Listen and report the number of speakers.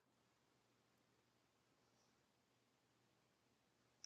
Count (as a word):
zero